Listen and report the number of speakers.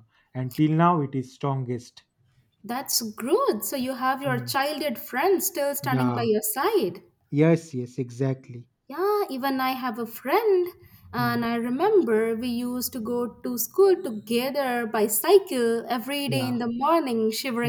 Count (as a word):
two